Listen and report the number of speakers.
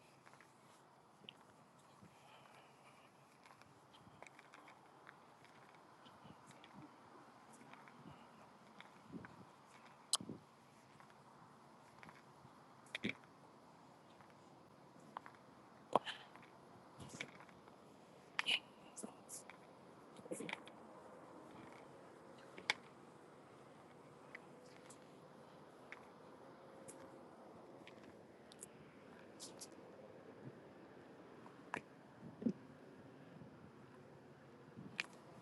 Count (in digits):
0